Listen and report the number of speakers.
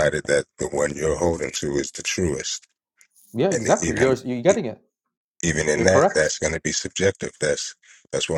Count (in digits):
2